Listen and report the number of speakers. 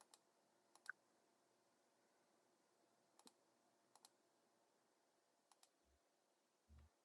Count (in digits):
0